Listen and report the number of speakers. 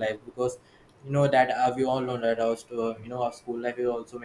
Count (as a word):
one